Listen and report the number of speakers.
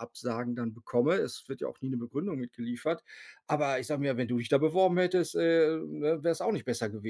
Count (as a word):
one